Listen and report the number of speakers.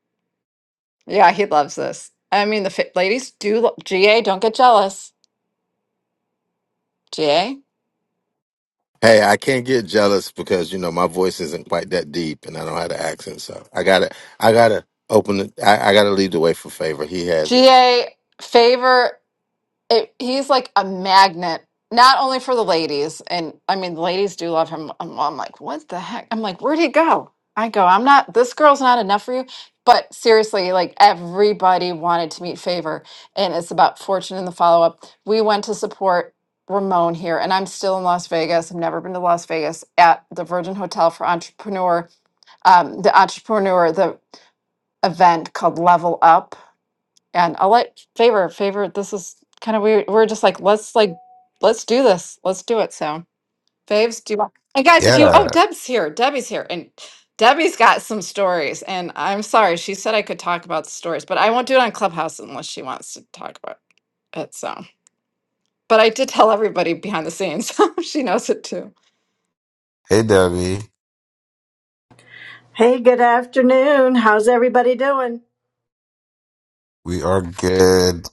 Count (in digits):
4